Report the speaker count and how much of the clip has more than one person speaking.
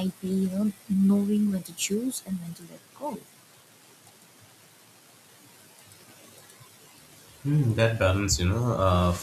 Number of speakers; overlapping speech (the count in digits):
2, no overlap